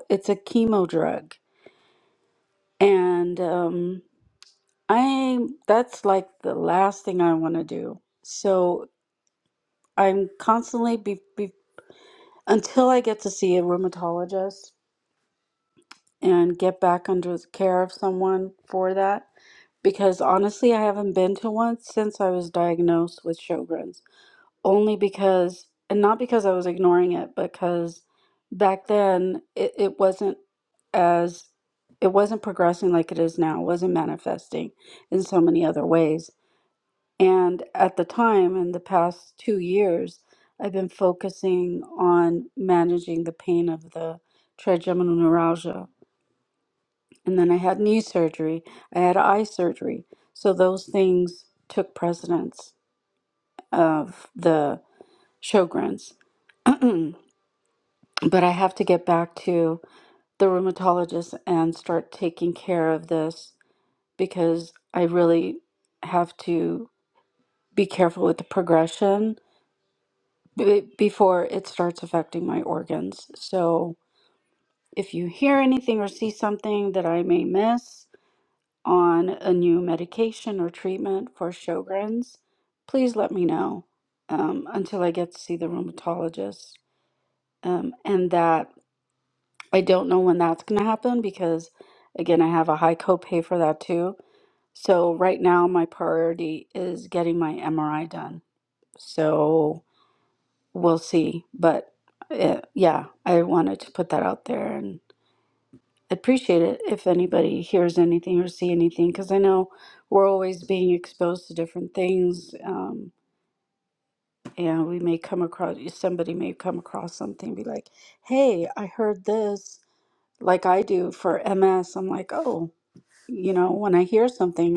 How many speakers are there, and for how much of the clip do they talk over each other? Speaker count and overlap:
1, no overlap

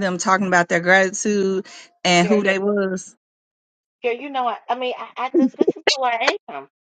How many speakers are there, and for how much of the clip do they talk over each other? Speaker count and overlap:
2, about 5%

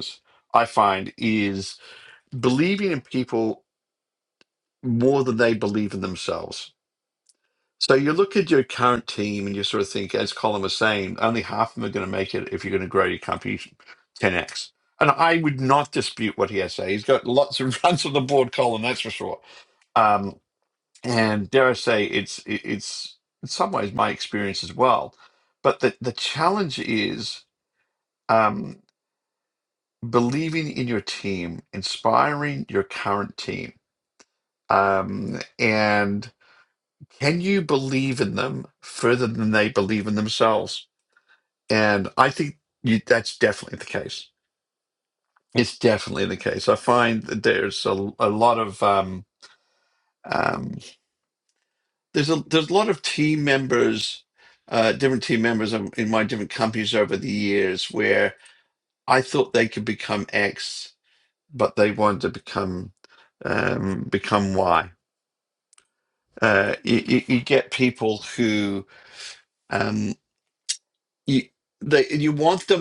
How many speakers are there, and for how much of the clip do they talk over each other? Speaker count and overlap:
1, no overlap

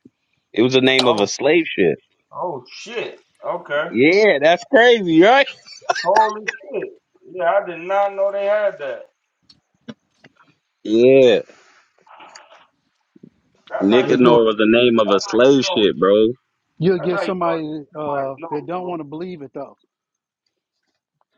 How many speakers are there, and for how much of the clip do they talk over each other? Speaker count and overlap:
3, about 15%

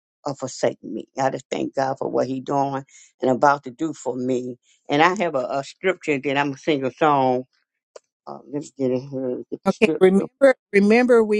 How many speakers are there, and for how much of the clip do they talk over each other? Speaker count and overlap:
2, about 6%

